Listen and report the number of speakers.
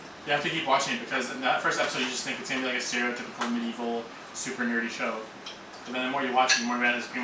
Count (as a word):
one